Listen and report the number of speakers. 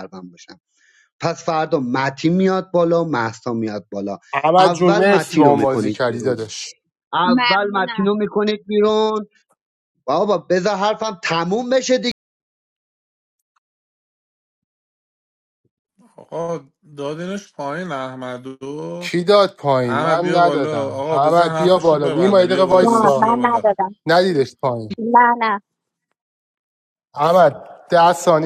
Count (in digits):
4